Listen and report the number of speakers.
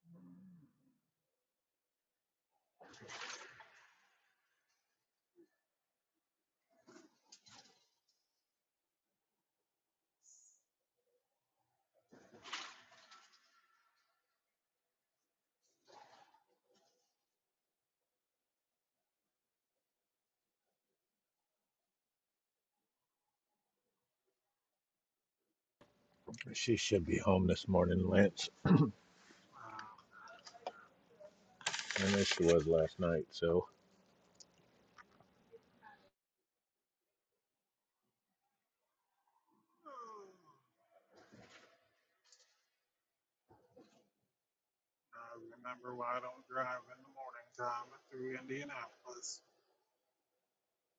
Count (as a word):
two